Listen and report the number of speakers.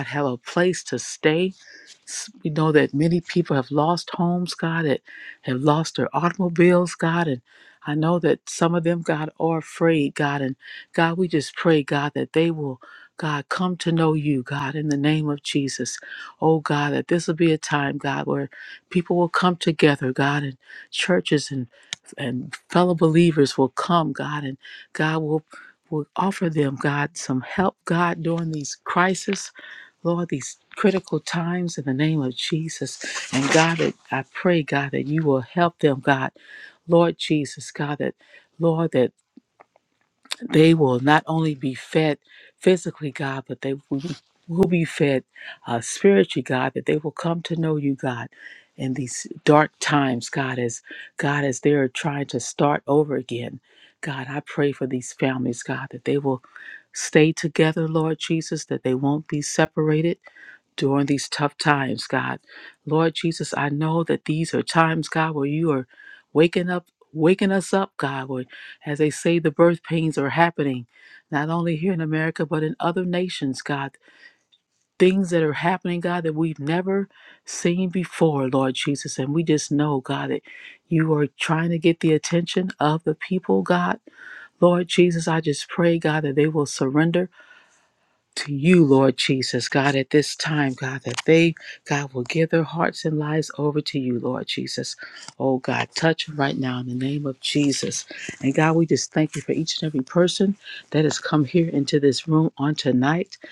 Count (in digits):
1